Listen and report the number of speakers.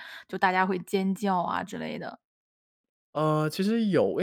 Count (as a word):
two